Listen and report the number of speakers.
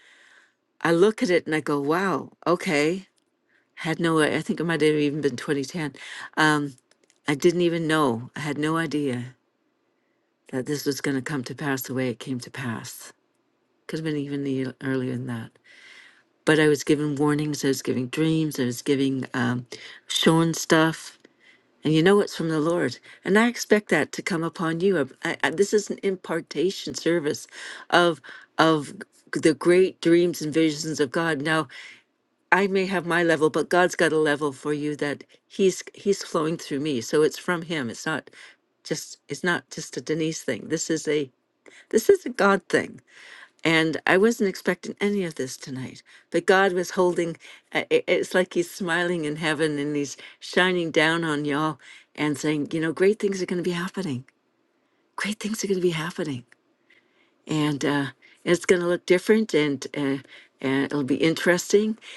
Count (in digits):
1